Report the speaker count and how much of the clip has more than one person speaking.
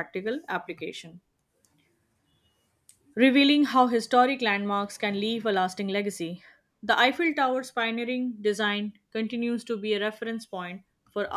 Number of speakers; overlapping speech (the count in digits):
1, no overlap